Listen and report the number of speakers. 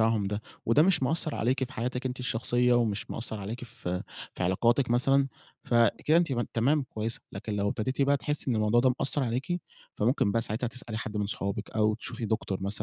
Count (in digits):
1